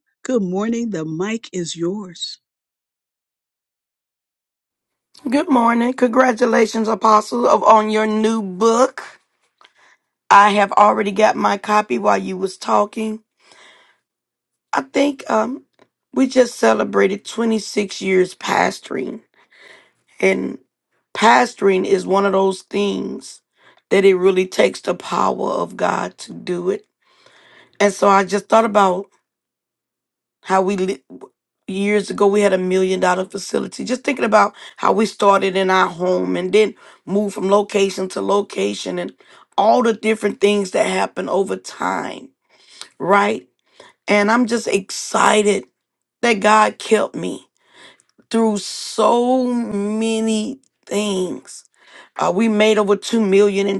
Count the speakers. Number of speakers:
two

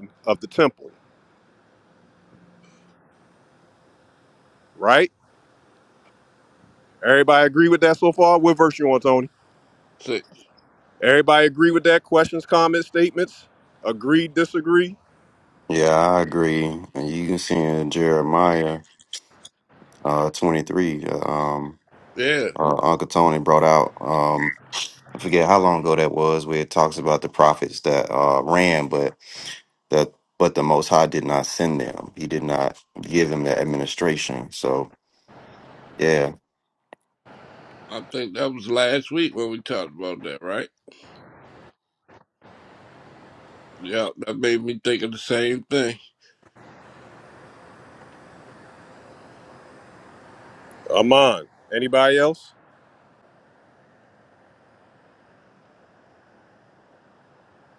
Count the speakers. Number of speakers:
three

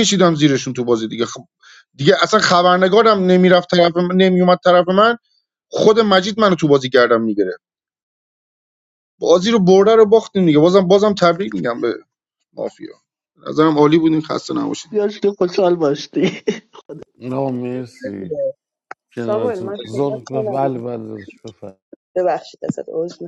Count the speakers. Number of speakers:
four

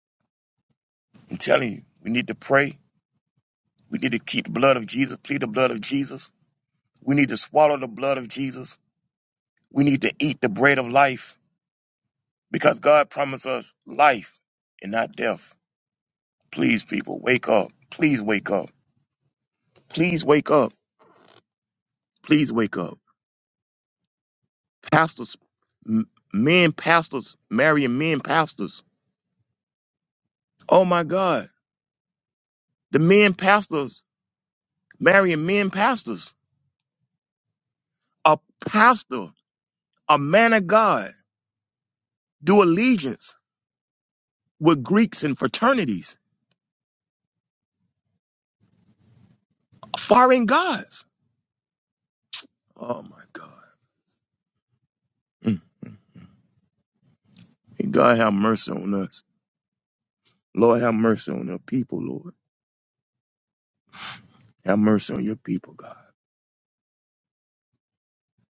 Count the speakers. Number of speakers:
one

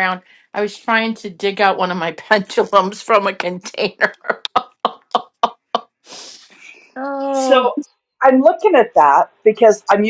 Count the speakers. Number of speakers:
two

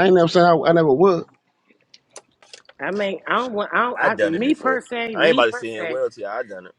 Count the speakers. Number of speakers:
three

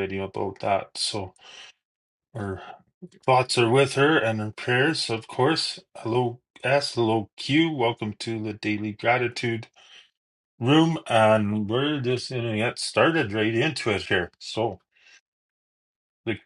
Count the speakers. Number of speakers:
one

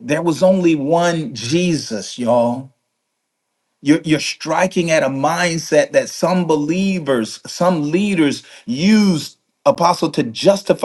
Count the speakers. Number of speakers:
one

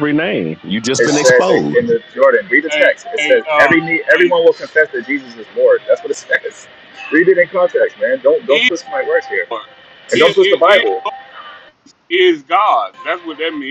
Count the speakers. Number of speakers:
three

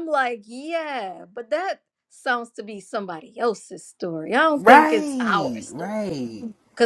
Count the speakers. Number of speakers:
two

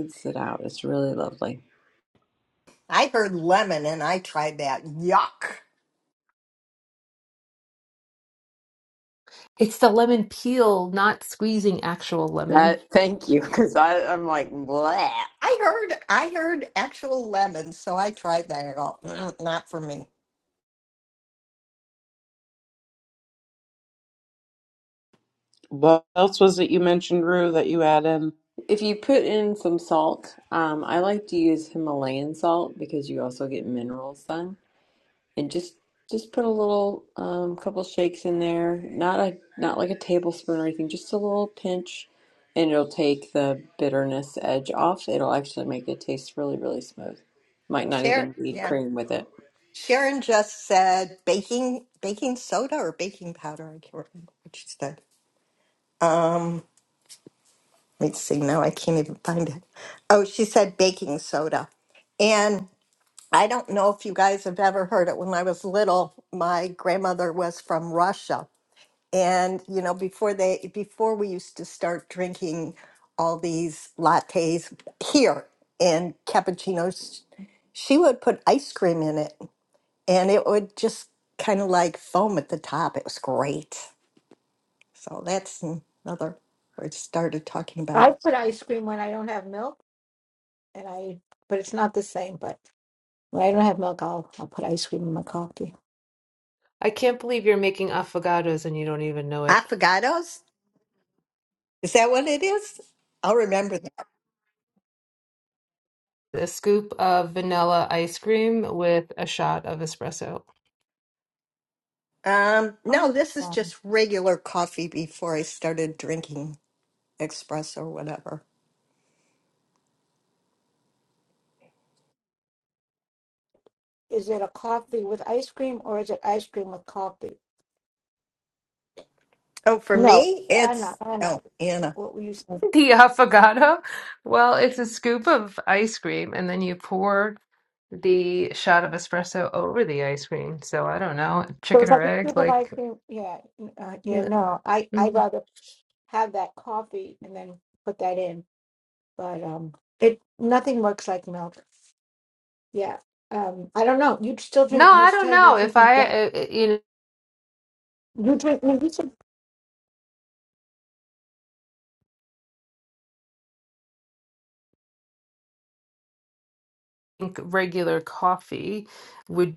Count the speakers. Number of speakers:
five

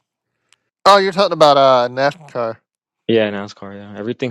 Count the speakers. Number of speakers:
two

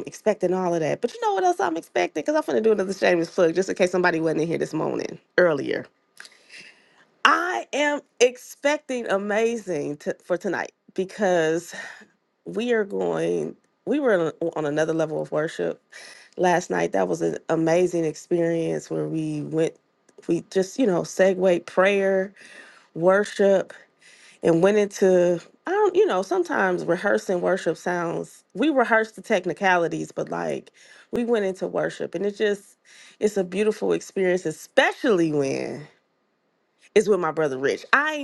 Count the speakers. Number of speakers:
one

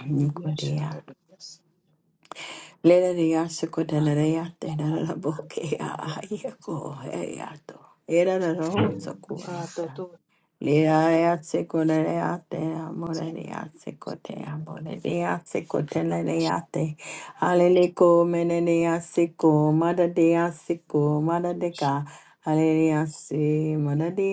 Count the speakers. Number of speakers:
two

